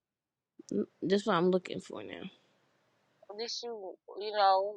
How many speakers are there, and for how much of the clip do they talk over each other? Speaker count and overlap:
2, no overlap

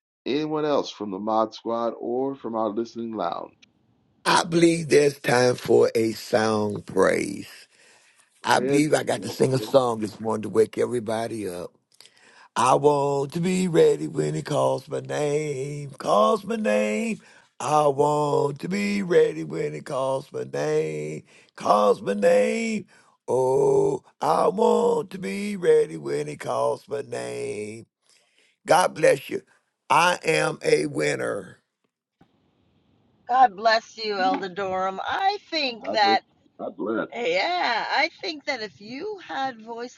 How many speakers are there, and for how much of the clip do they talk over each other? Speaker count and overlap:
3, about 3%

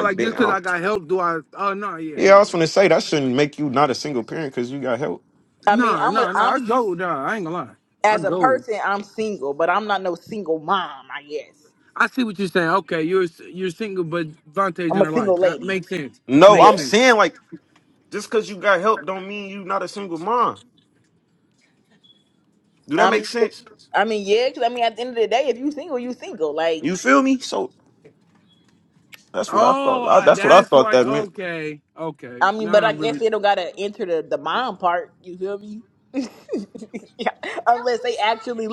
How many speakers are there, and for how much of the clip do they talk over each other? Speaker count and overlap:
3, about 17%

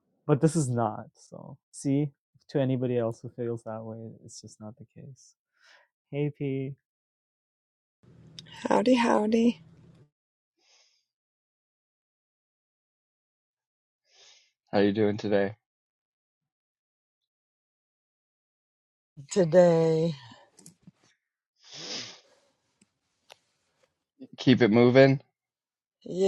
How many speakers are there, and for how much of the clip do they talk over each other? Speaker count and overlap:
3, no overlap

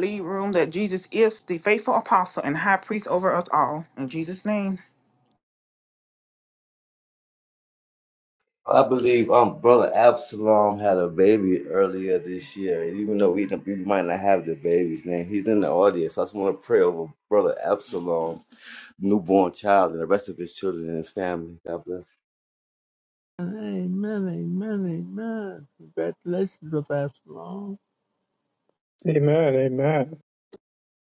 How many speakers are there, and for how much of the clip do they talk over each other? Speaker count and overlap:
4, no overlap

